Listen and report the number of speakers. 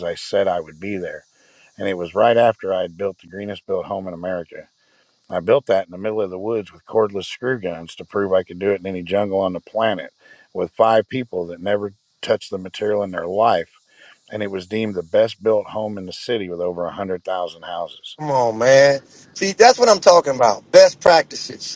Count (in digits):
2